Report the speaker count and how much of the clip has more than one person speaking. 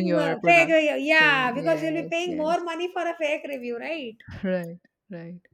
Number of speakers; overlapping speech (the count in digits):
2, about 39%